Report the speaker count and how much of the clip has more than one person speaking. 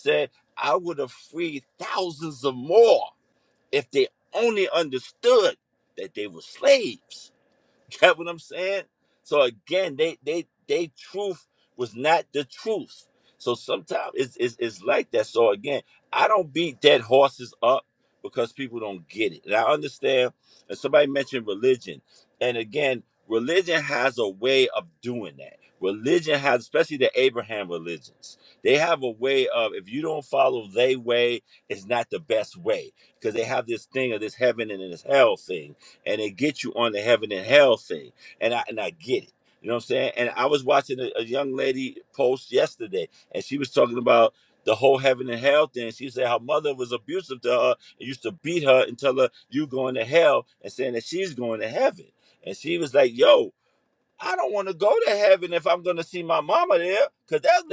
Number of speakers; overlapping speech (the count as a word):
one, no overlap